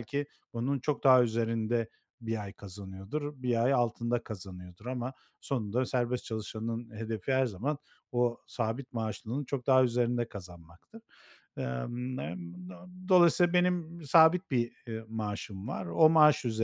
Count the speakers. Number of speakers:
1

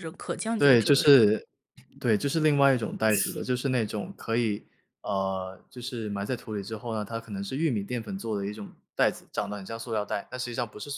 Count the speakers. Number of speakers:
2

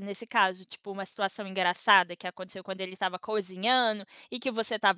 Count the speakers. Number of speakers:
1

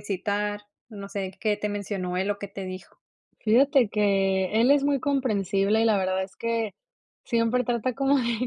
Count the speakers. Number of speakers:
2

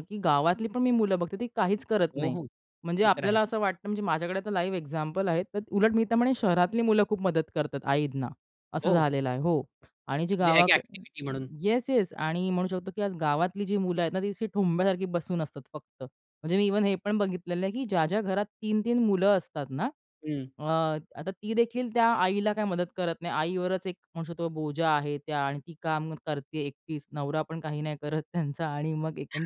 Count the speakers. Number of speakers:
2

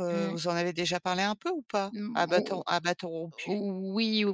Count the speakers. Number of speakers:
2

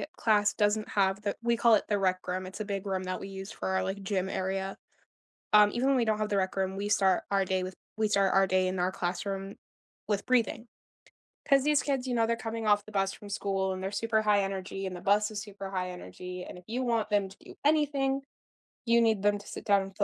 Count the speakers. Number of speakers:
1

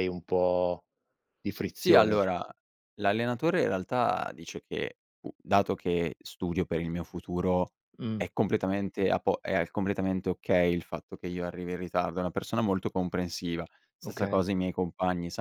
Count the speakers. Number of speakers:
2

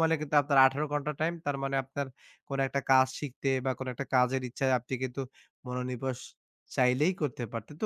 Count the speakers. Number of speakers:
1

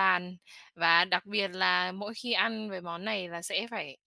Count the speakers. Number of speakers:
1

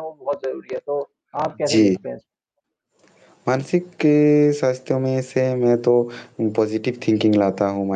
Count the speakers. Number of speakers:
2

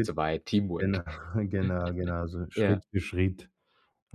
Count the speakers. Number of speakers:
2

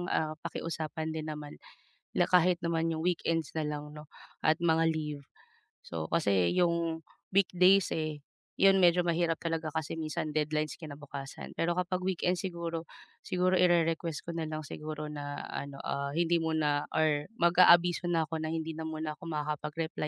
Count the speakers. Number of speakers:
1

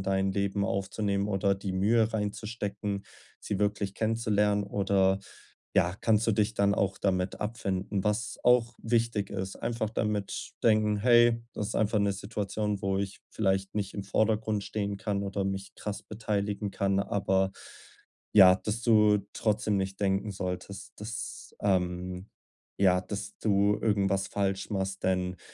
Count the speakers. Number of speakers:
1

